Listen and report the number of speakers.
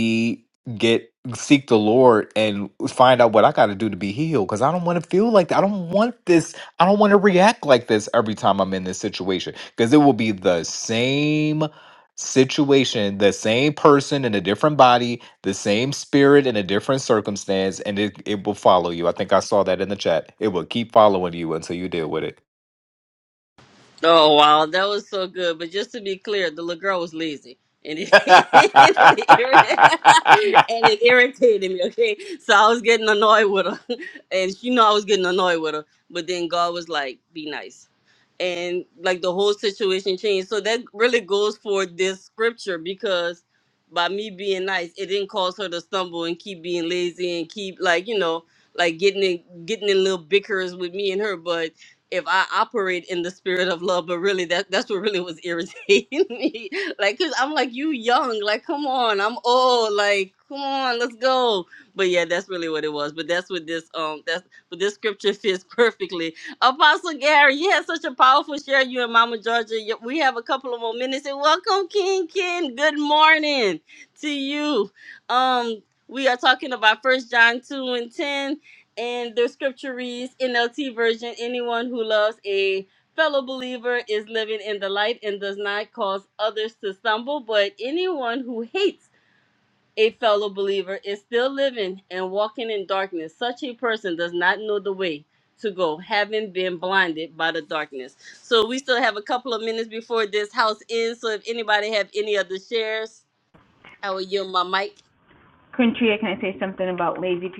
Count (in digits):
3